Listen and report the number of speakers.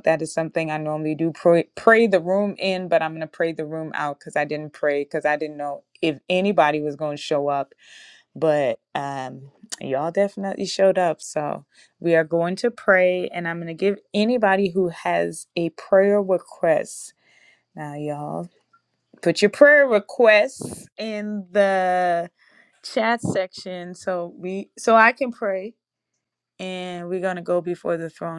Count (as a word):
one